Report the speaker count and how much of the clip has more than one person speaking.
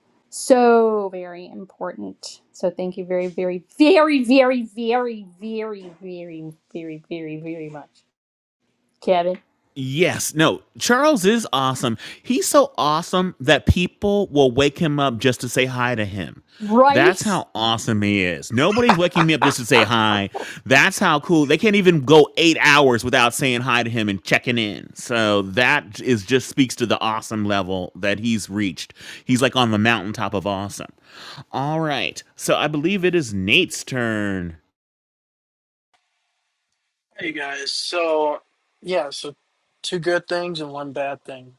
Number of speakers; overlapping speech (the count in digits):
3, about 1%